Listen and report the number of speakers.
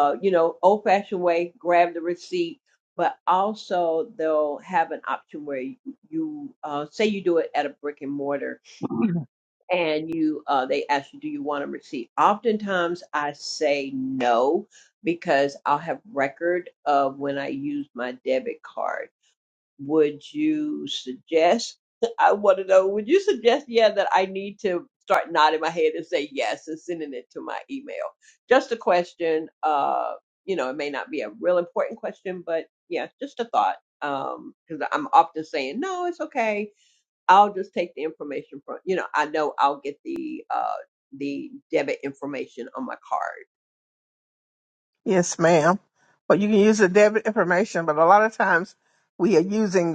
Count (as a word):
two